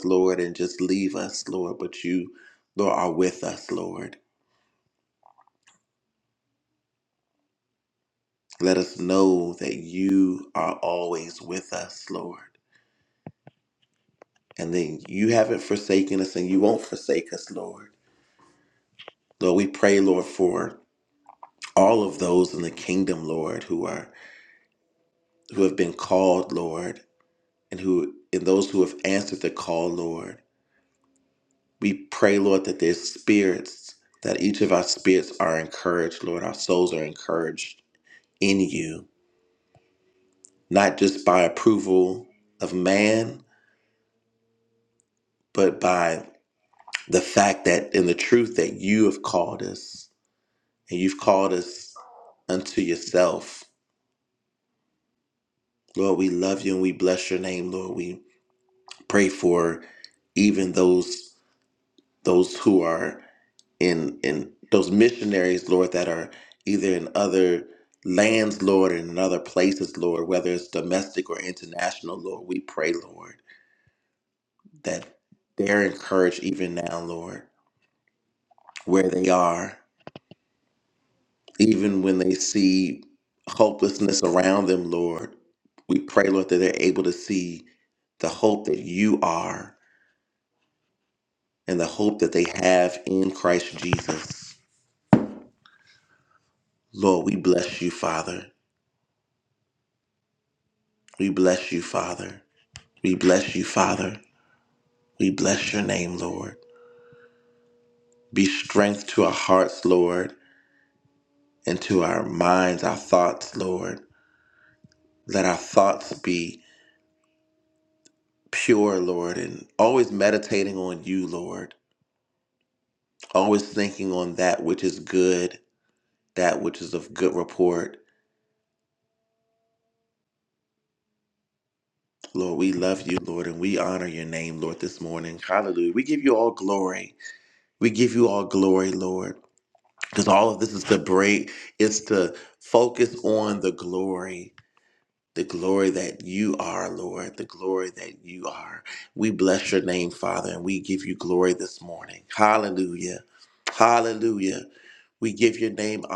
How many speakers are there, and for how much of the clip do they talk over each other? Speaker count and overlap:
1, no overlap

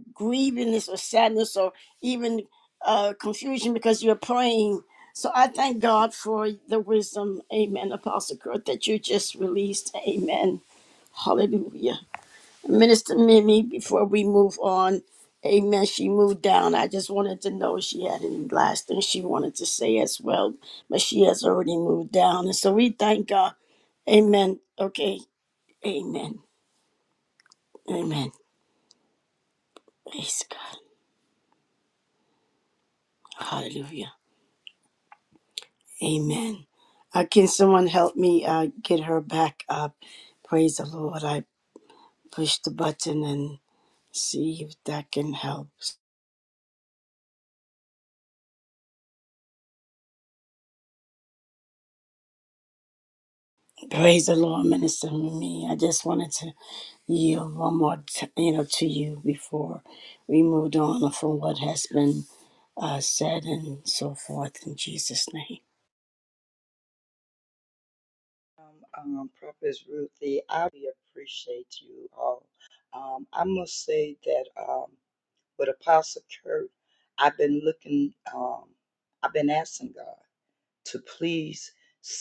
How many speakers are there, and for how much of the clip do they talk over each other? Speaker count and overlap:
2, no overlap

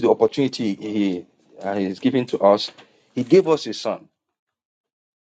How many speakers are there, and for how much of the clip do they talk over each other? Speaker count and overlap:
1, no overlap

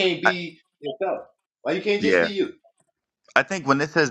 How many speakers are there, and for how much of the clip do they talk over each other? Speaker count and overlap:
2, about 10%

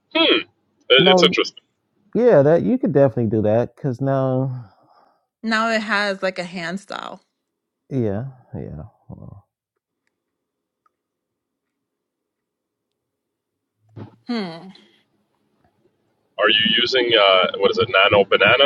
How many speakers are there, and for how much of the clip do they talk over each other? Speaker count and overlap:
3, about 2%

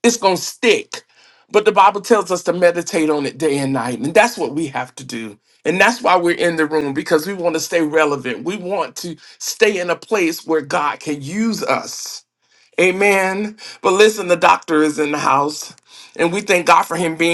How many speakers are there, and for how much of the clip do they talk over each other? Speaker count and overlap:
1, no overlap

